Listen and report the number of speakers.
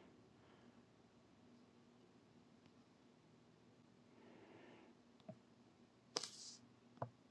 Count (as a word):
zero